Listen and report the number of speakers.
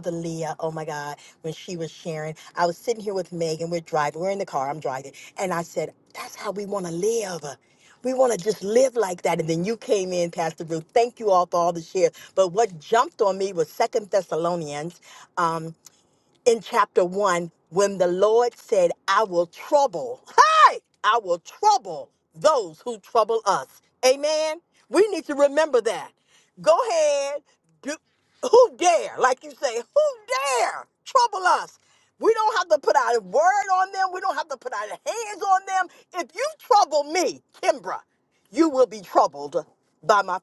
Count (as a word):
one